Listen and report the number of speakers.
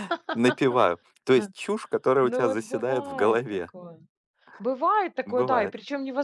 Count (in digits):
2